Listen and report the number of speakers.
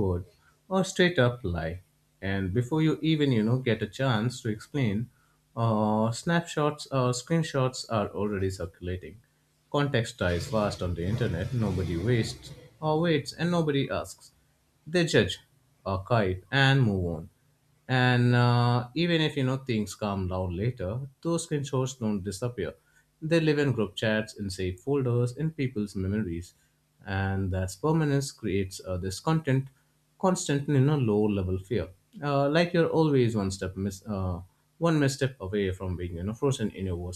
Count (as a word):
one